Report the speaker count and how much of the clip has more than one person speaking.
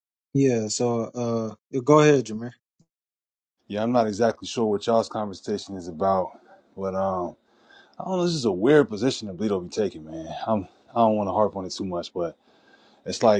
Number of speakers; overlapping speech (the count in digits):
2, no overlap